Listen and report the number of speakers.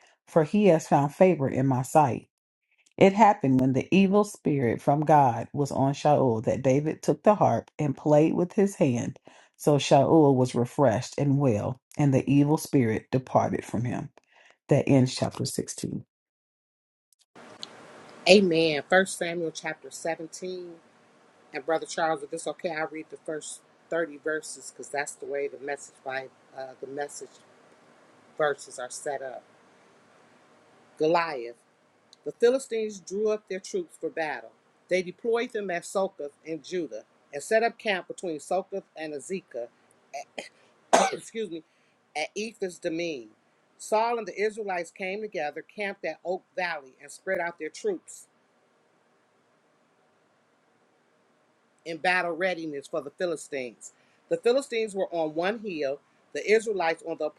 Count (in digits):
2